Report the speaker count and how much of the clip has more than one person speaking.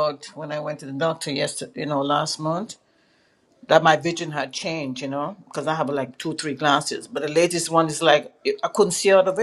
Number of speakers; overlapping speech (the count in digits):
1, no overlap